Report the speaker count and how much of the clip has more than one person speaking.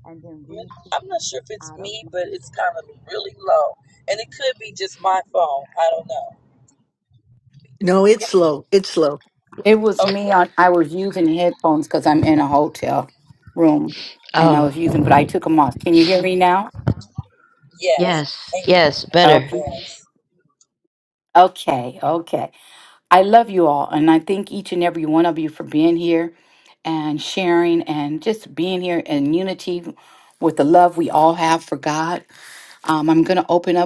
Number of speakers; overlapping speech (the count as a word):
four, about 6%